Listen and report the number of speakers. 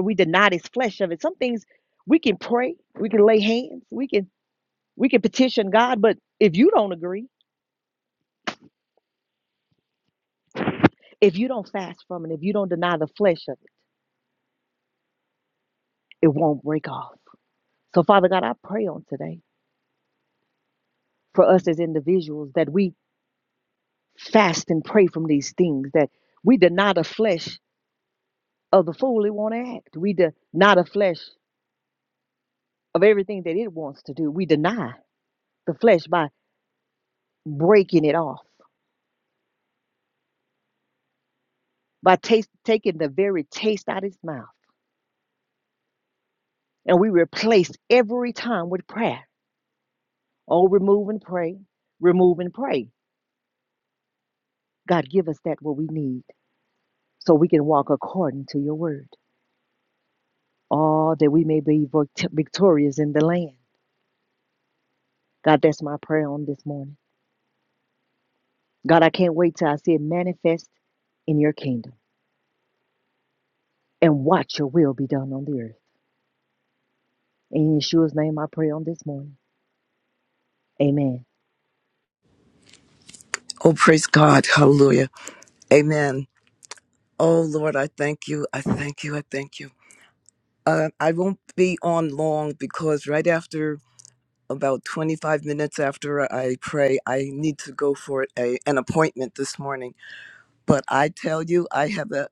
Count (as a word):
two